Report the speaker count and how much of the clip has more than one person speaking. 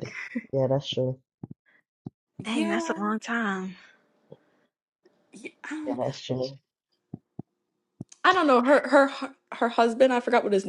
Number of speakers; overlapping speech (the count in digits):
3, about 6%